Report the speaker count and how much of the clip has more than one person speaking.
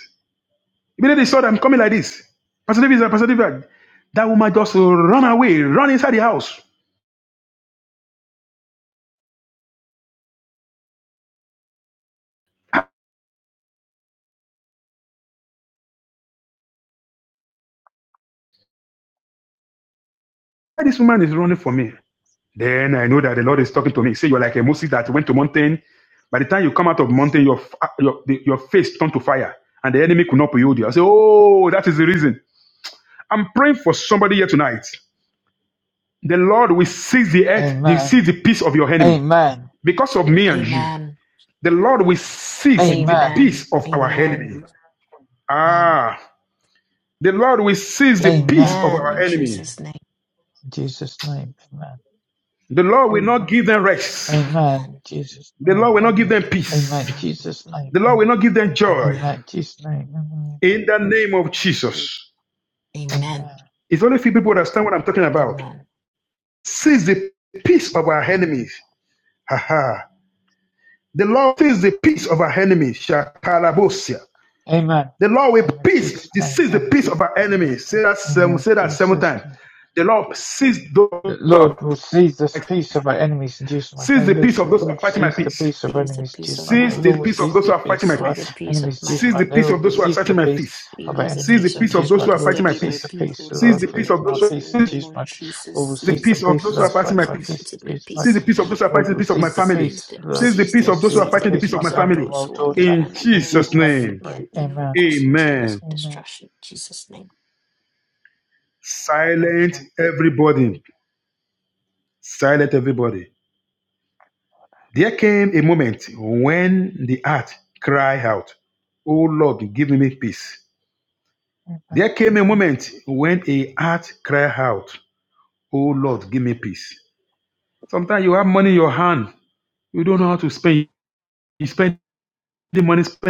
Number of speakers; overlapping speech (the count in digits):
3, about 24%